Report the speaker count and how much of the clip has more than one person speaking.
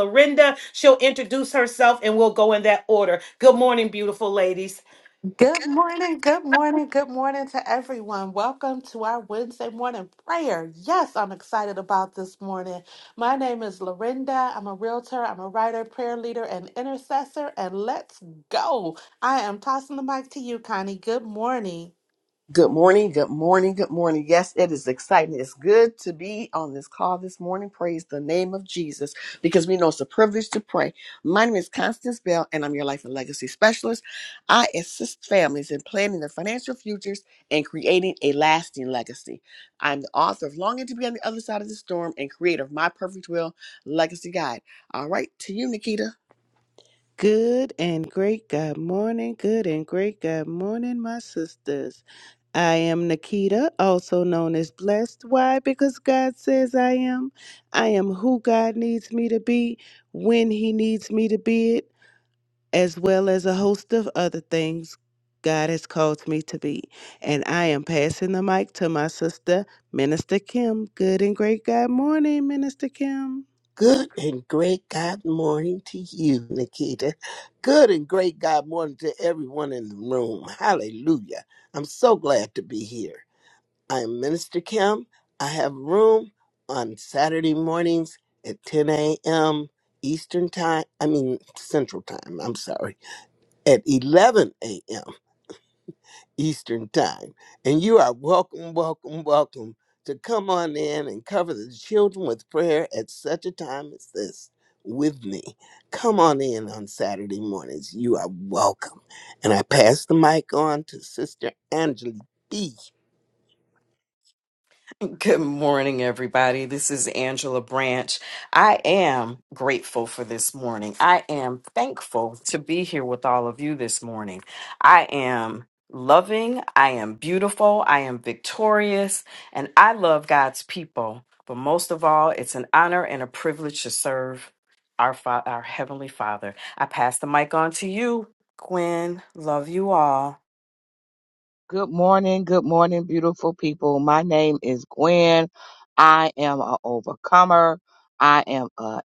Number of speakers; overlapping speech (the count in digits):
7, no overlap